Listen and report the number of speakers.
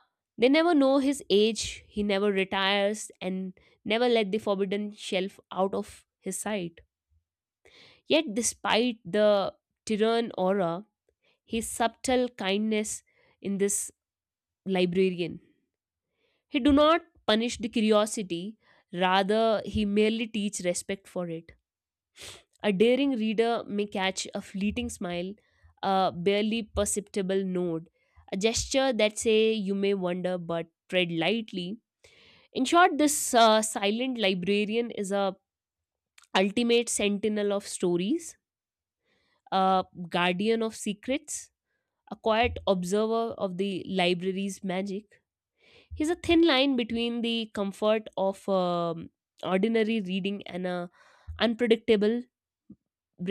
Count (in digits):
1